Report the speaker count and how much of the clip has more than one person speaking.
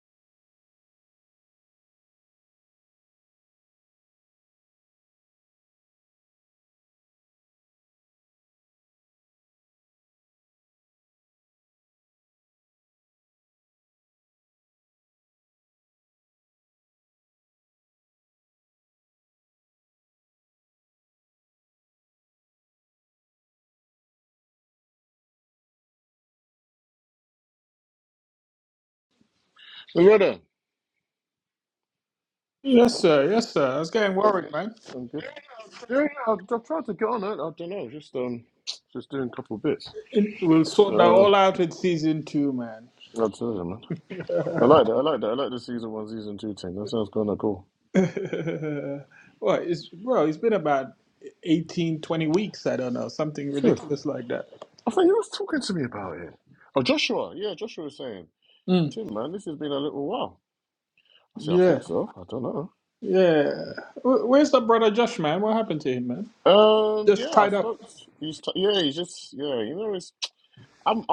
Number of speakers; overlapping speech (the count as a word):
two, about 3%